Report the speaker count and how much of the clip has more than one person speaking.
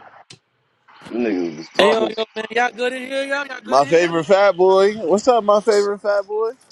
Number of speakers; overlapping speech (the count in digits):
3, about 13%